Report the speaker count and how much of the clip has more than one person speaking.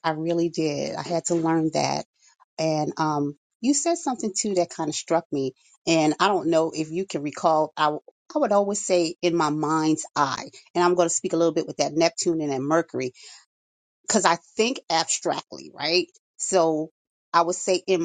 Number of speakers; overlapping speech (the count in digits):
1, no overlap